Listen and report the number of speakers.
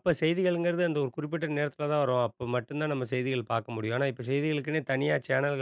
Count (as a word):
one